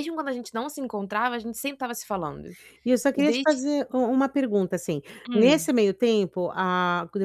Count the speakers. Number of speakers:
2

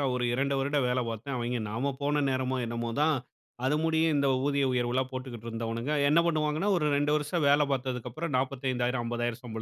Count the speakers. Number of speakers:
1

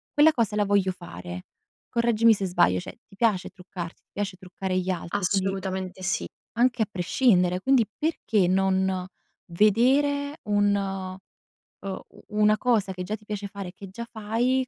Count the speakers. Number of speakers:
2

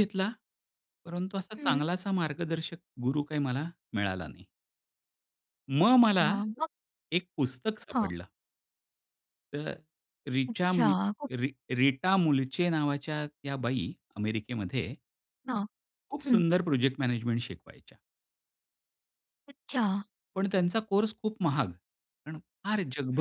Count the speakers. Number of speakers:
2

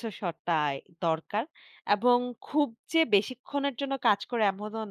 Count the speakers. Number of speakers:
1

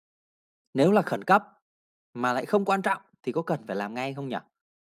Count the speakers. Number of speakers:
1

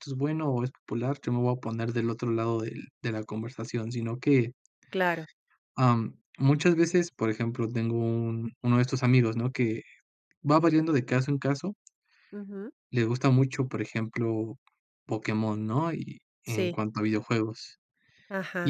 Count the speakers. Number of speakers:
2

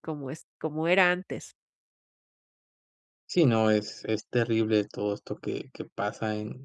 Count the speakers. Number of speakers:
2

